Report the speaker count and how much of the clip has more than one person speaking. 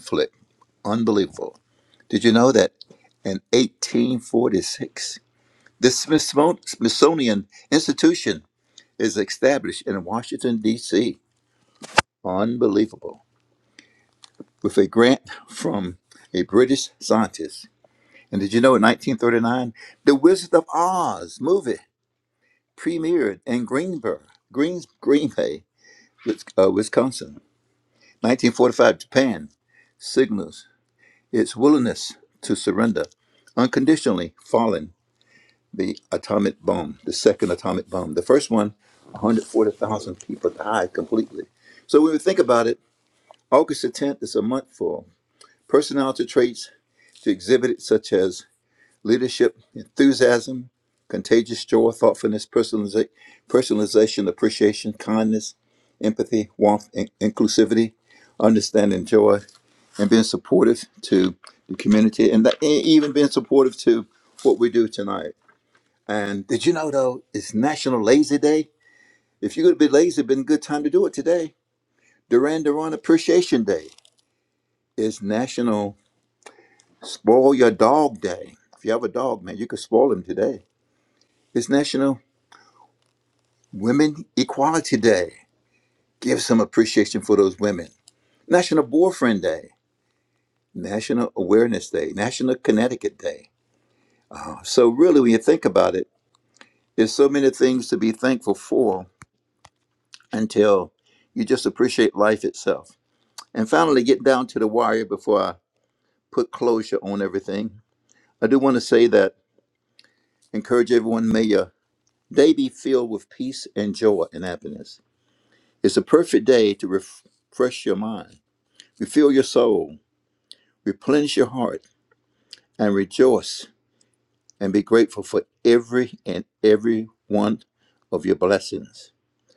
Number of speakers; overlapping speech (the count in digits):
1, no overlap